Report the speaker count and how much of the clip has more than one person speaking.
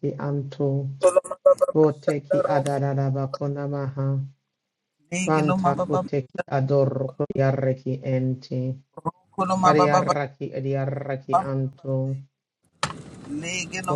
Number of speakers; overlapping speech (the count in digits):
2, about 21%